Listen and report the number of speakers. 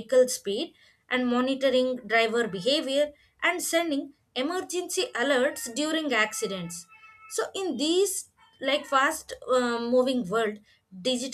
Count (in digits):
1